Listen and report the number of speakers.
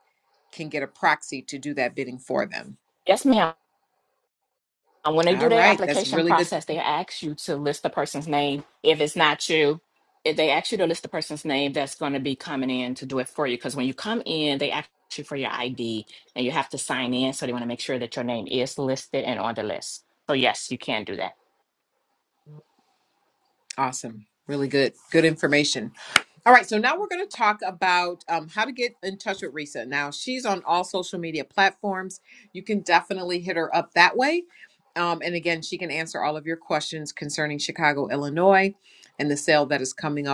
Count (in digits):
2